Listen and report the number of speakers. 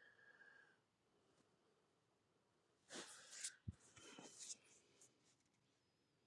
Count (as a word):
zero